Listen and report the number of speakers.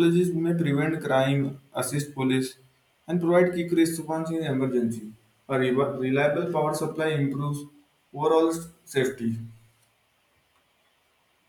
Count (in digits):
1